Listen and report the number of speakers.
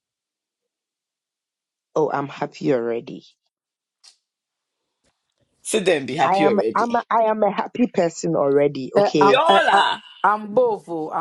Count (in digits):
3